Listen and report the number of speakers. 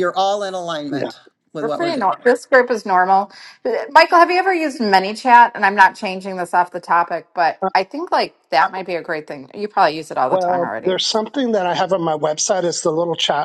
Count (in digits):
3